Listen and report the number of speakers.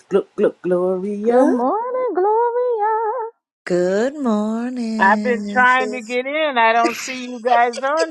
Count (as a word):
four